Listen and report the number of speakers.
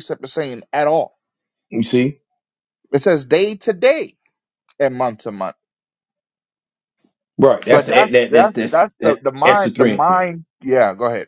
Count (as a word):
two